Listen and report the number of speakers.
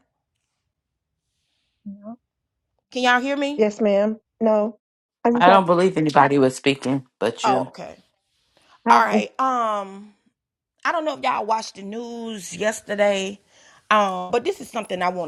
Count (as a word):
three